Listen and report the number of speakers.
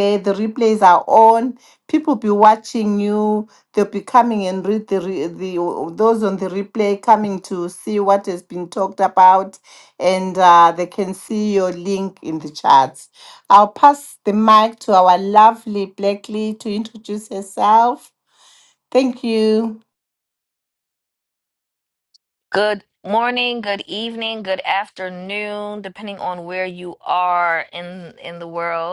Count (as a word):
two